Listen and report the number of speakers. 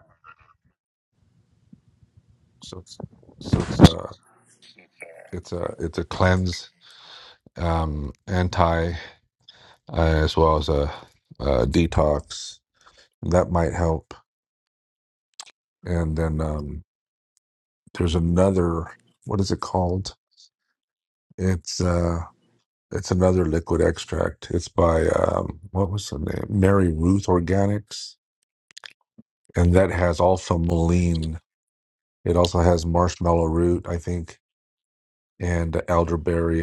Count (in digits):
1